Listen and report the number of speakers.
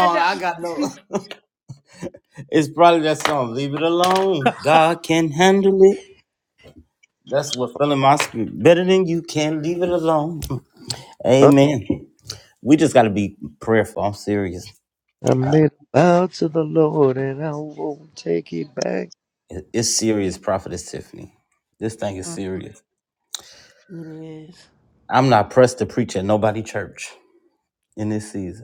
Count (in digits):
3